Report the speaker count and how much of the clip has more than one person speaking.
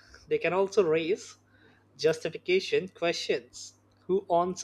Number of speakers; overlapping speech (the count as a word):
one, no overlap